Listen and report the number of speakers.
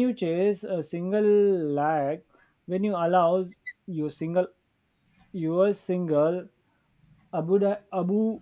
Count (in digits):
1